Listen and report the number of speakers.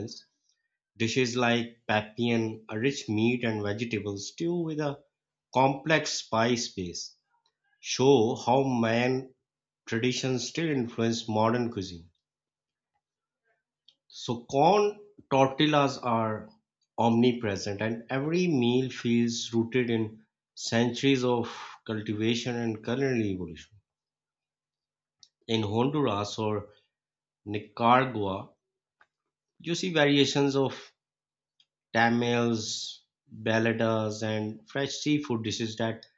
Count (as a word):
one